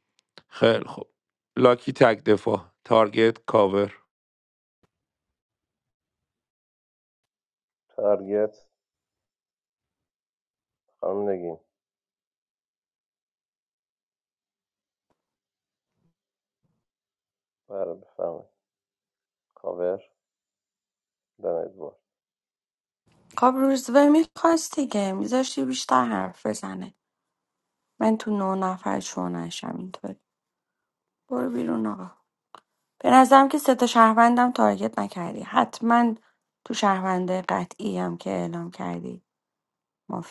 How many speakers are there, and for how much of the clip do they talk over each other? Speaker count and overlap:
three, no overlap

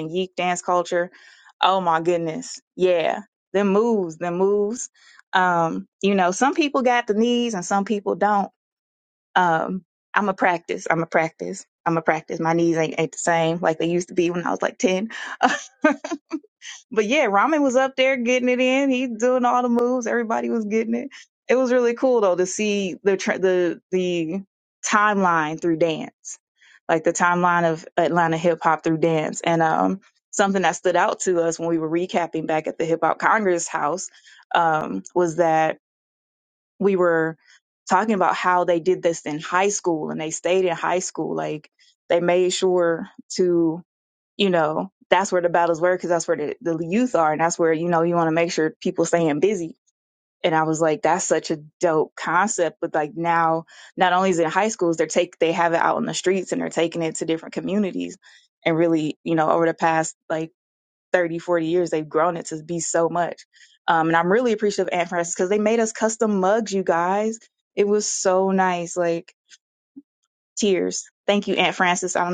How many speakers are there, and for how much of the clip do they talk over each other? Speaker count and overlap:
one, no overlap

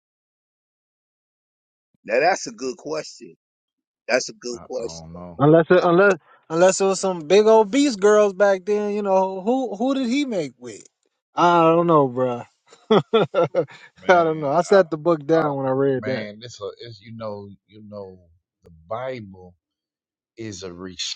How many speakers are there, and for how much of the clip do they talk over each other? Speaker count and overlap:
three, about 6%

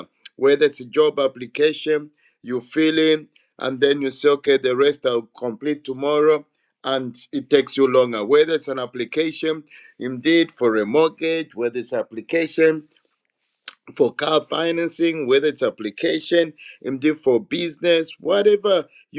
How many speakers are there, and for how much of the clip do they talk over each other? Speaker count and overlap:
one, no overlap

